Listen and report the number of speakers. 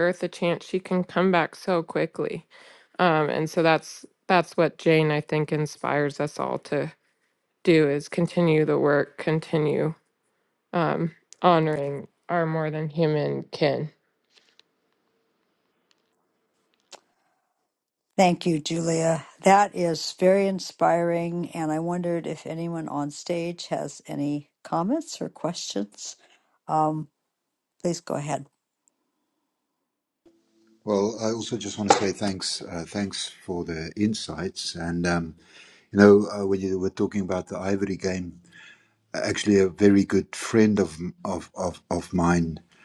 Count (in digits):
3